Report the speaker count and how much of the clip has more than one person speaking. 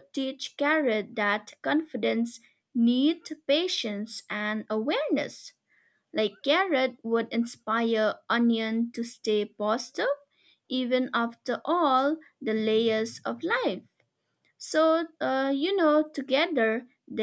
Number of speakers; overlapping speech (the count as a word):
one, no overlap